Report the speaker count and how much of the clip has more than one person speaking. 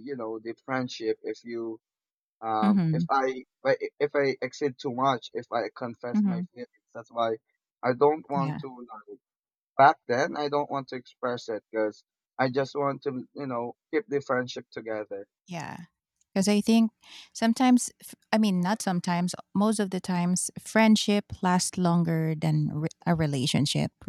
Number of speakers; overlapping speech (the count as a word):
two, about 4%